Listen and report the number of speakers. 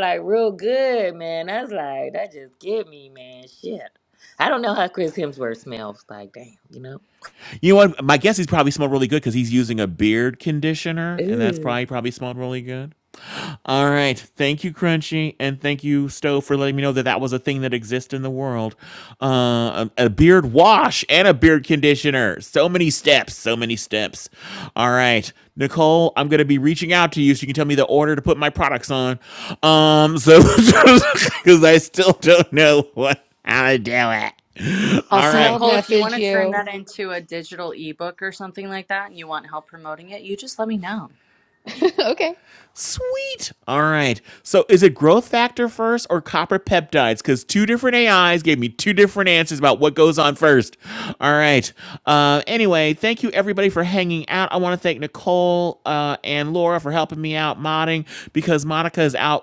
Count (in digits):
4